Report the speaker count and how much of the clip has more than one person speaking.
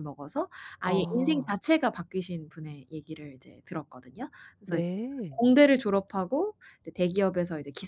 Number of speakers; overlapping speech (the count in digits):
2, about 9%